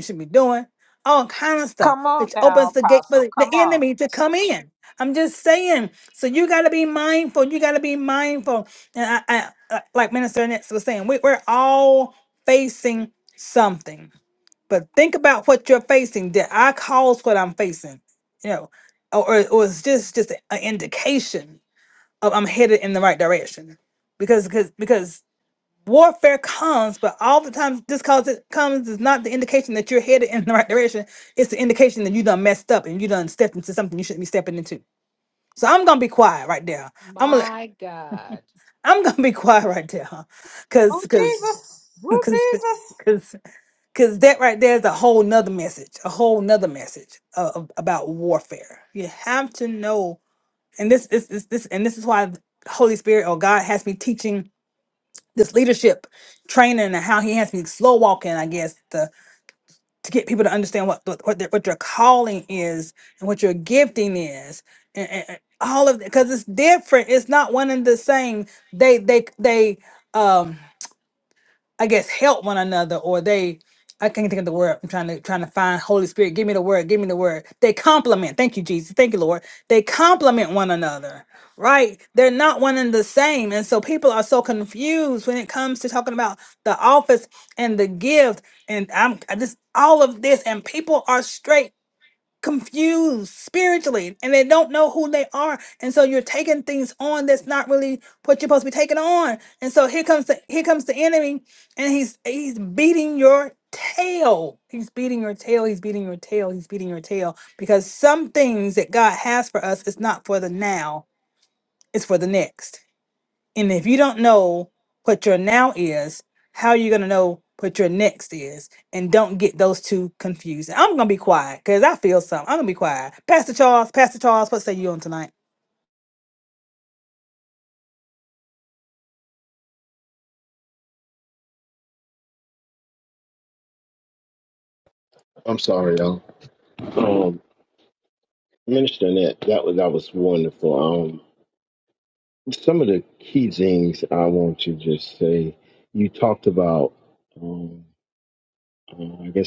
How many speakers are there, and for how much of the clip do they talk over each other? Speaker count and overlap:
four, about 2%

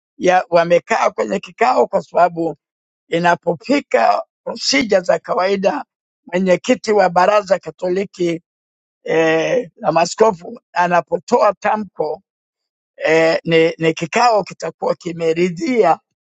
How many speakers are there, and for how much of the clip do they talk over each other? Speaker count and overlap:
one, no overlap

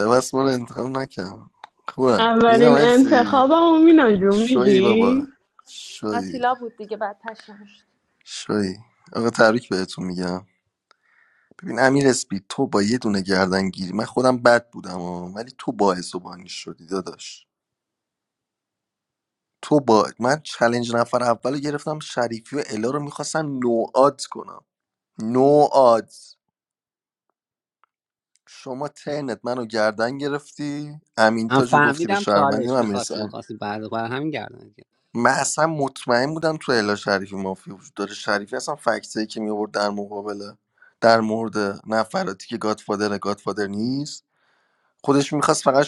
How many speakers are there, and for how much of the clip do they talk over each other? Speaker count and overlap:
four, about 9%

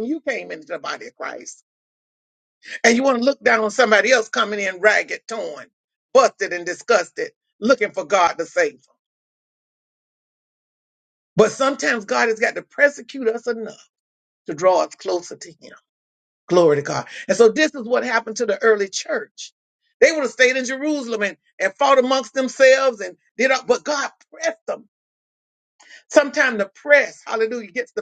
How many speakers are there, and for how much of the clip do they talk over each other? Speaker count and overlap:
one, no overlap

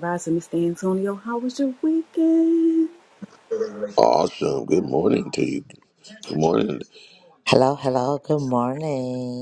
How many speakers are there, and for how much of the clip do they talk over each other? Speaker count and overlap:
three, no overlap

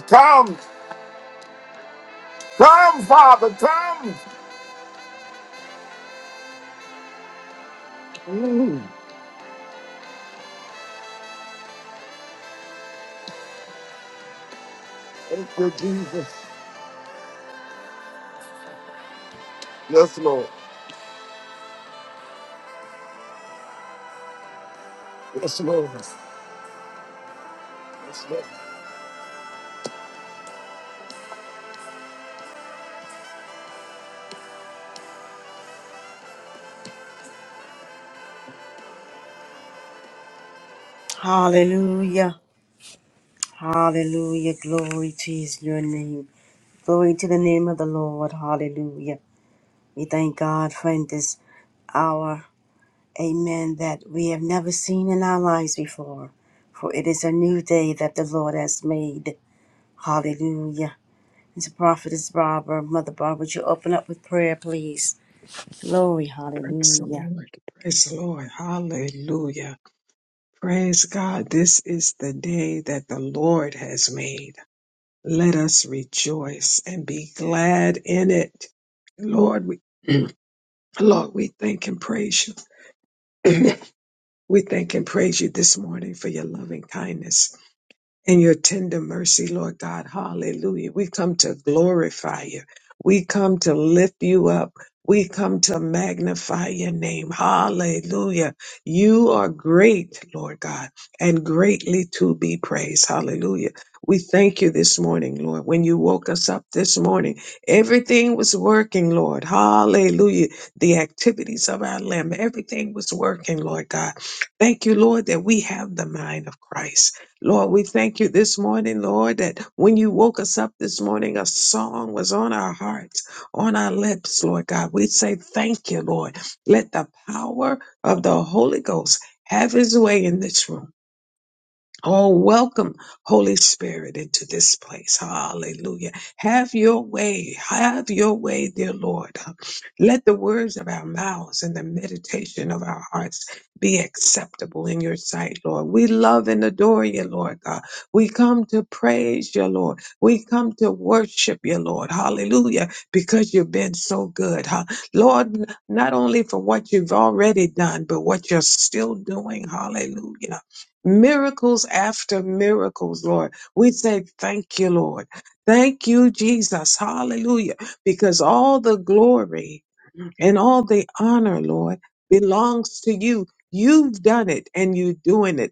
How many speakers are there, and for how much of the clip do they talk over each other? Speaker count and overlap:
three, under 1%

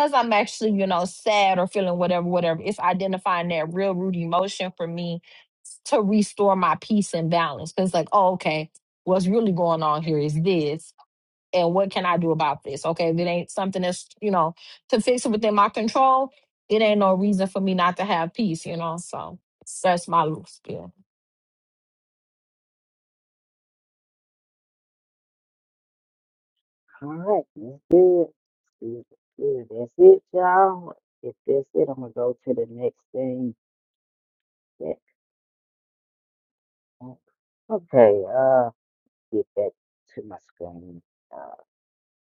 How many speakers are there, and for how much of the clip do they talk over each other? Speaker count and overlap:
two, no overlap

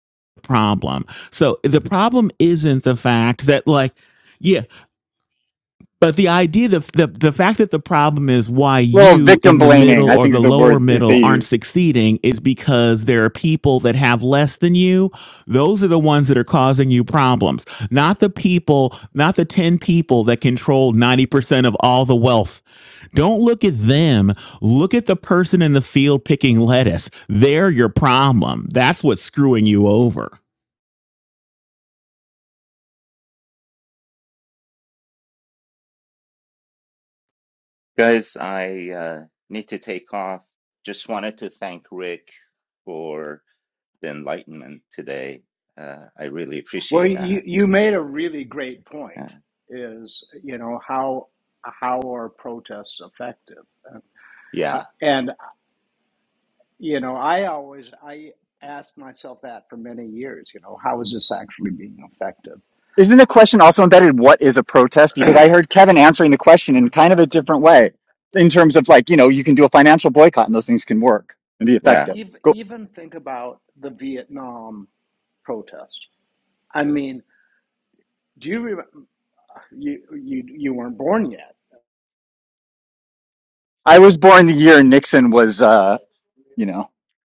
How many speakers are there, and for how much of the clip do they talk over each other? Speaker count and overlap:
four, about 5%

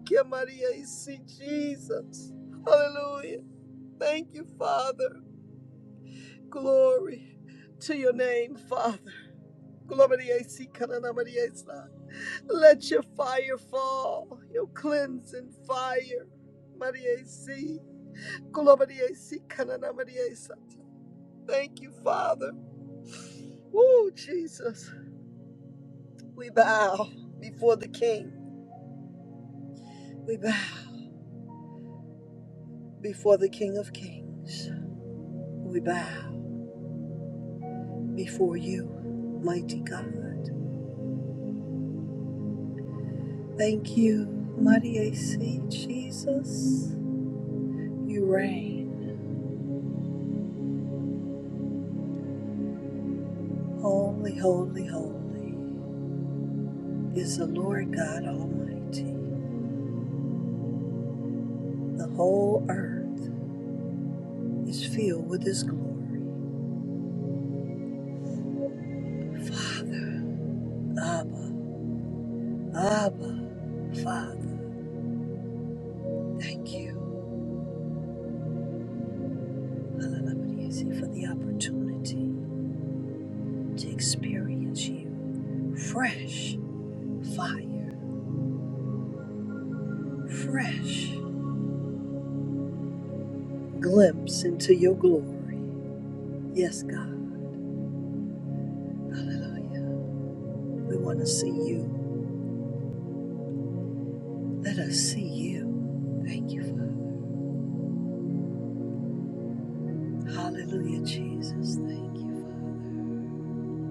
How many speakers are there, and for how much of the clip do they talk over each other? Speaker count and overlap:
one, no overlap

